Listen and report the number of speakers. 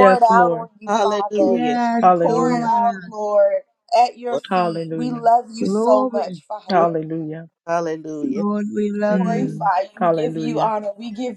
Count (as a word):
four